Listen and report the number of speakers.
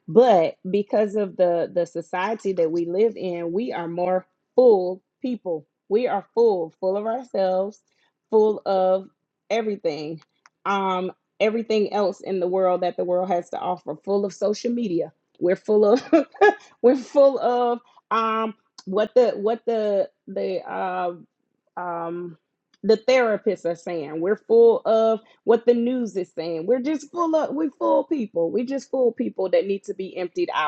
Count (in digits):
1